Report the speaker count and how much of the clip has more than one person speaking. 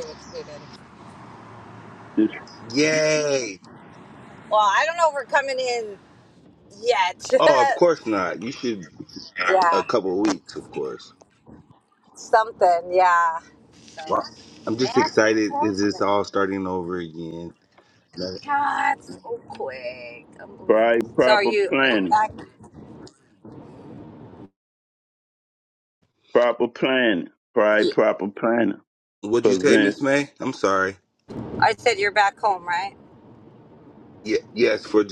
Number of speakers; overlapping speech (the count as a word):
three, about 11%